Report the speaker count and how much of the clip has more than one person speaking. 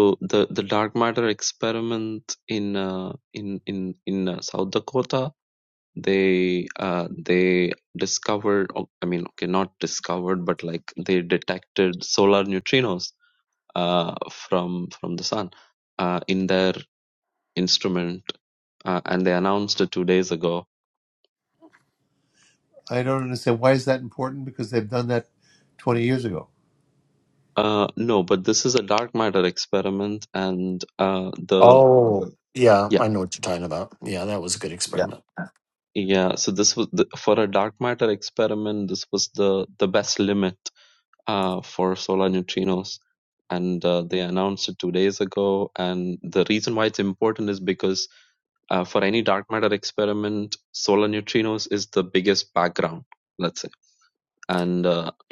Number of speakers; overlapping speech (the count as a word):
three, about 2%